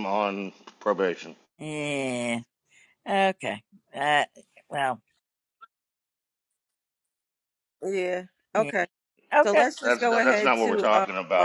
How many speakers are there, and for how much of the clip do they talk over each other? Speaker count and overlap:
three, about 17%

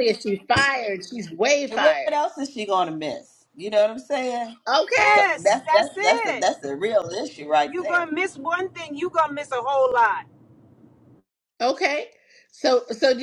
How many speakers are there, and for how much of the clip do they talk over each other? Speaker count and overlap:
three, about 17%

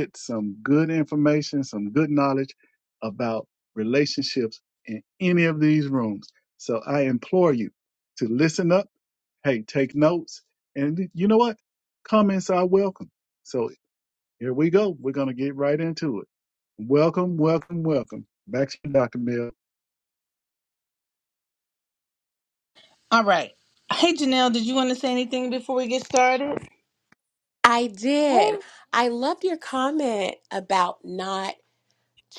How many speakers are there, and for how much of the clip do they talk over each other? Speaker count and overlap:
three, about 1%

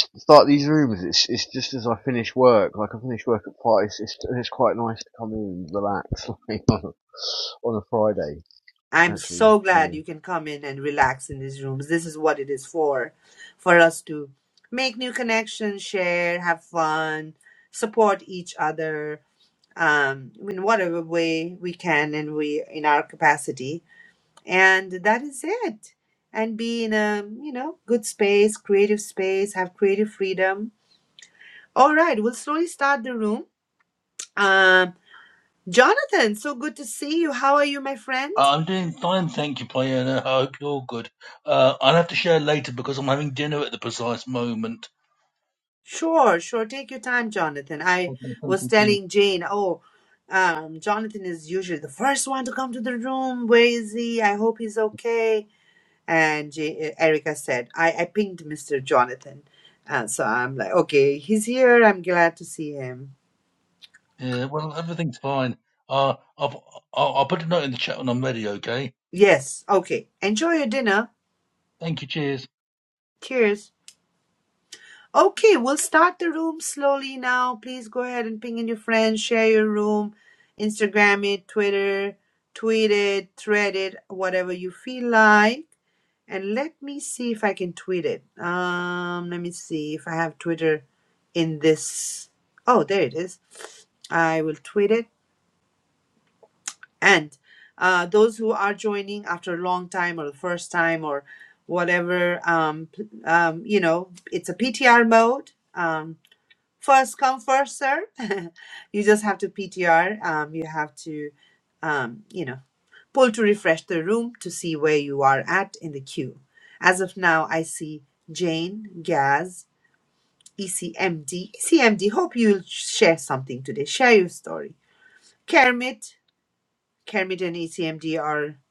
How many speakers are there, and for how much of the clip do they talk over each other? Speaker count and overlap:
three, about 1%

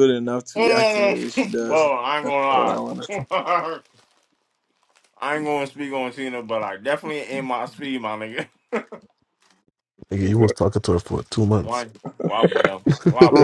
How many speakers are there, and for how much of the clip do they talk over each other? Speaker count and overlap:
three, about 14%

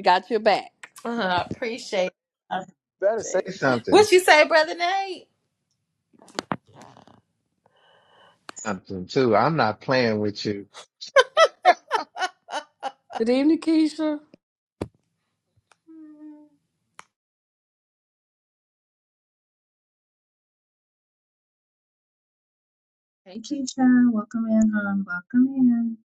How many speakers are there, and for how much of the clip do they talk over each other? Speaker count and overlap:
four, about 2%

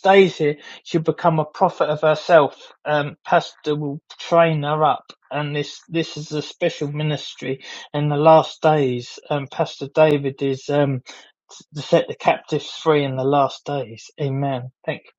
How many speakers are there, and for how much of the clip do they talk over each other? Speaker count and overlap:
one, no overlap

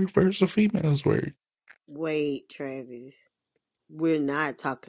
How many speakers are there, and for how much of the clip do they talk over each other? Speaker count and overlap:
two, no overlap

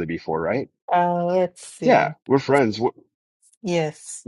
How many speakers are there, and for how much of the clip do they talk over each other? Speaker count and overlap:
two, about 6%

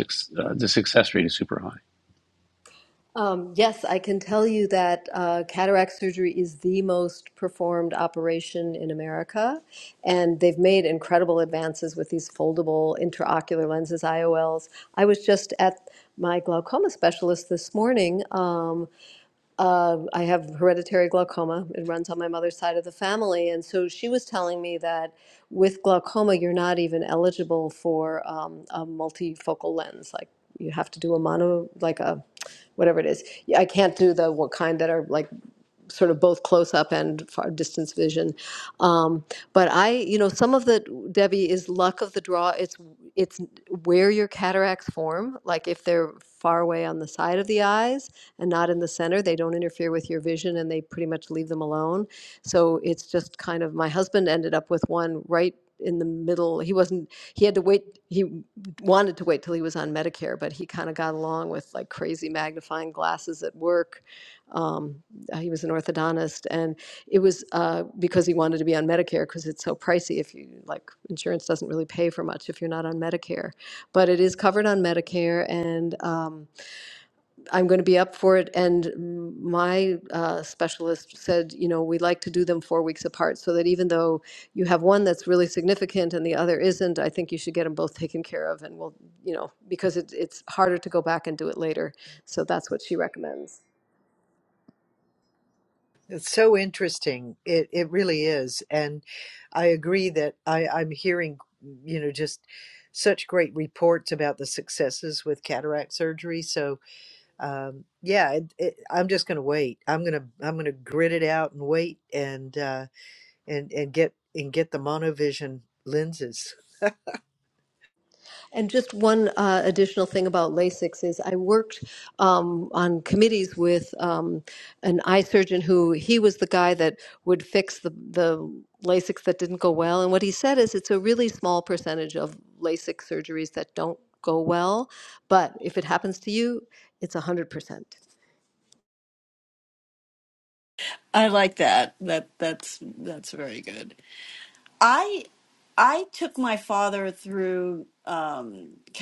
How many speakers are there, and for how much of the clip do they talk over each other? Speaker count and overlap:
four, no overlap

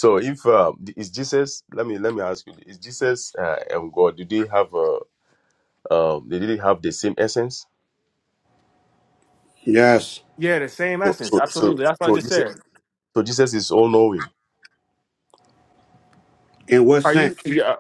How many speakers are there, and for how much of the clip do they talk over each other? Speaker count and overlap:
three, about 10%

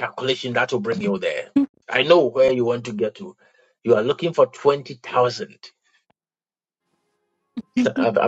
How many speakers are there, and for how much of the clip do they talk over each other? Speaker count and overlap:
one, no overlap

